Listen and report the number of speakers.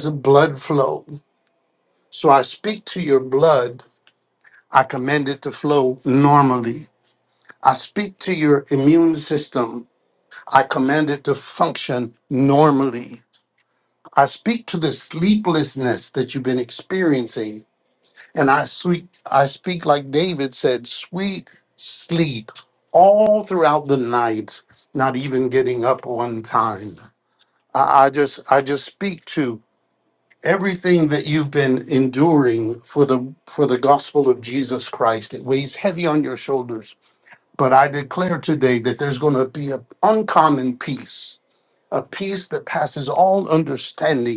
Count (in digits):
1